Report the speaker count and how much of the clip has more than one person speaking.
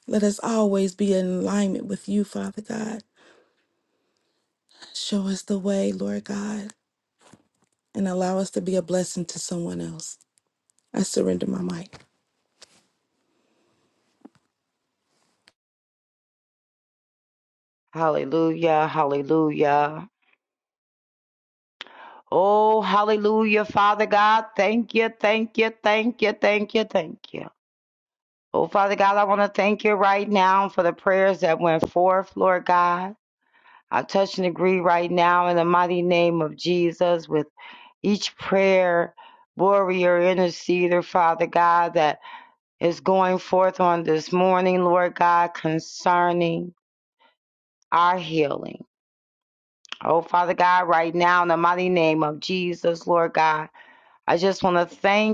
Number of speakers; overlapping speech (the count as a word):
two, no overlap